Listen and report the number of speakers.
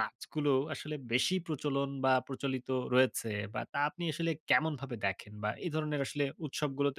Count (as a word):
one